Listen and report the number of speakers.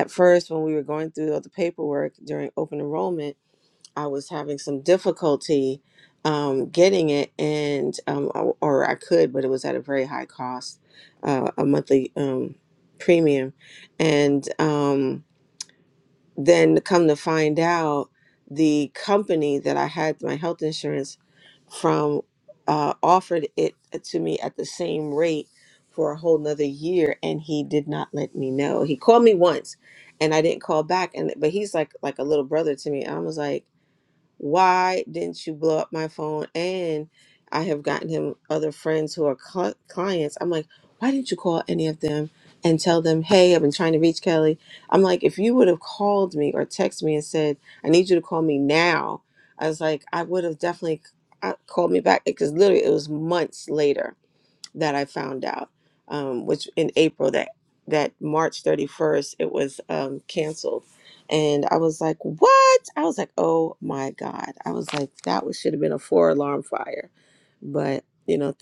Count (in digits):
1